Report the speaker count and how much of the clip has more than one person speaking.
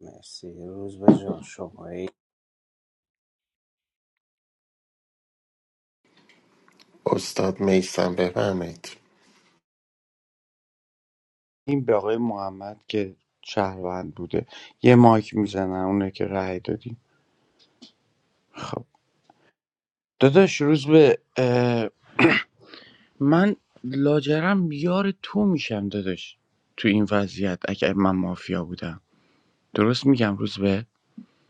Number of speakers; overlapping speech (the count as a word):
three, no overlap